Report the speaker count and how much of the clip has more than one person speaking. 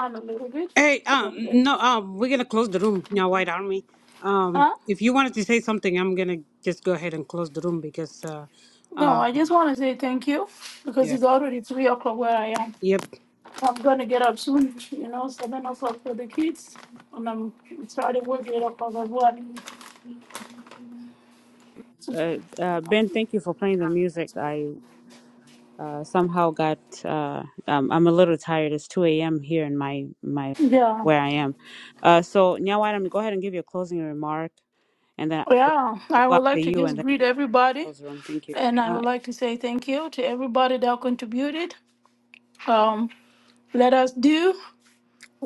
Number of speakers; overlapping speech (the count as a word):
three, about 6%